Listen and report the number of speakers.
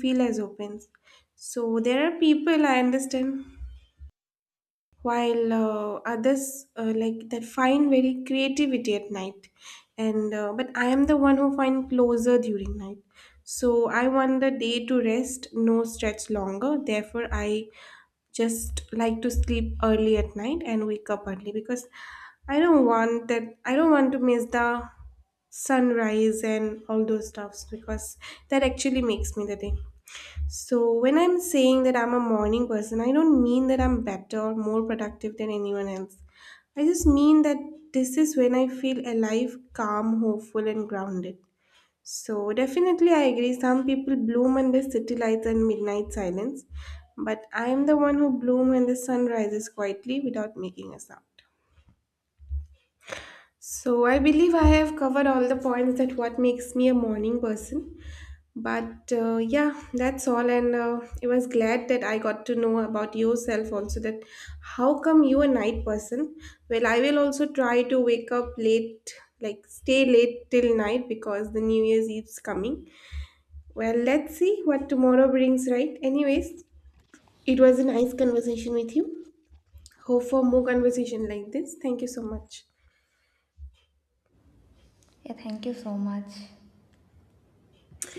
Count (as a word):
two